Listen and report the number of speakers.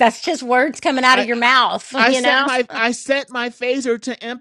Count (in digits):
2